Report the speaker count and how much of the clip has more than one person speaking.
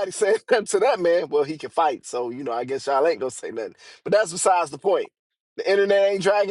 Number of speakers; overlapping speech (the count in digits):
1, no overlap